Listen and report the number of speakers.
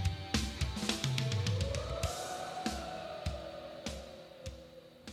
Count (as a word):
zero